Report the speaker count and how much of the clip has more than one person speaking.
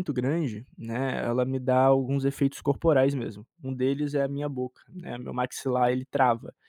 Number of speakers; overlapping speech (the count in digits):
1, no overlap